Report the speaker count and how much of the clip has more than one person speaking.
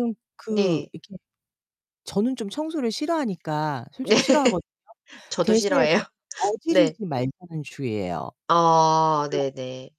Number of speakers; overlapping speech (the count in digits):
2, about 12%